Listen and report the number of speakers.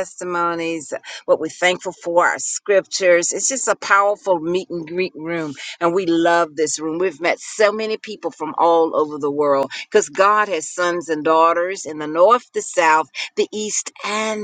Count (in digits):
1